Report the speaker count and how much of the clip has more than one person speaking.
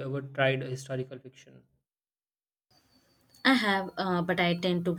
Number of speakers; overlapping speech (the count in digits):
2, no overlap